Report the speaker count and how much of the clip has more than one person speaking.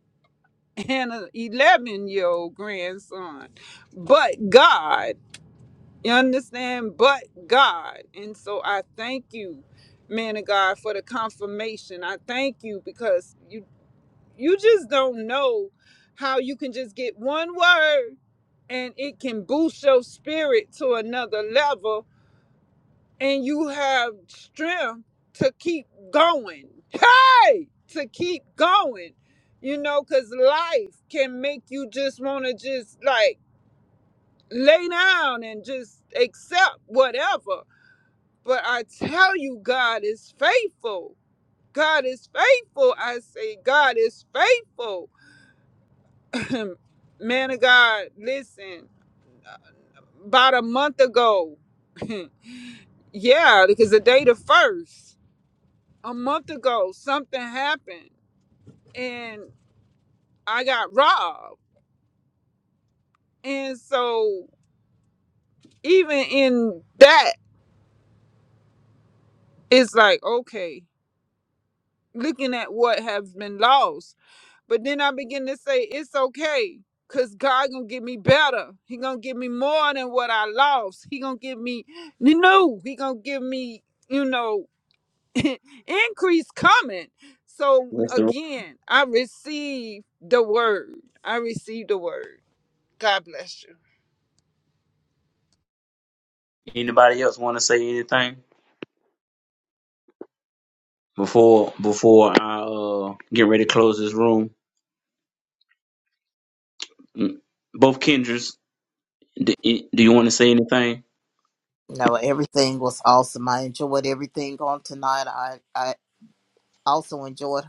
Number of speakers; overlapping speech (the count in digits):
3, under 1%